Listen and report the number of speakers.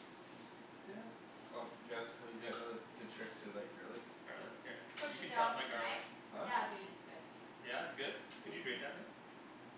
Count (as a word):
three